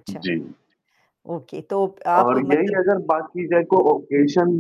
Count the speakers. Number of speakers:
2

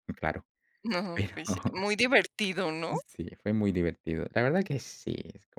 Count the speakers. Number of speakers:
2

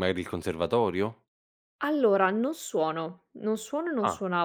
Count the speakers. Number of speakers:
2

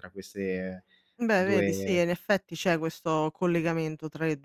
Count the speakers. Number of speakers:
2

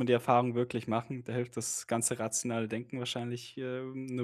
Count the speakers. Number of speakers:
1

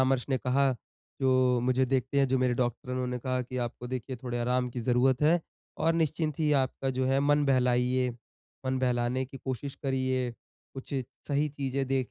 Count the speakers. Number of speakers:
1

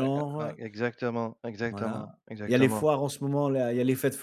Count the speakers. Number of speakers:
2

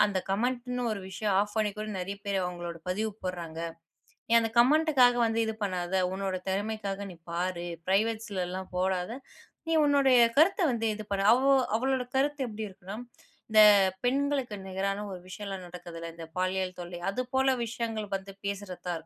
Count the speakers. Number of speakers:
1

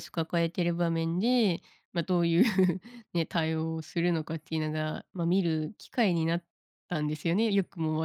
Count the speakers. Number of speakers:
1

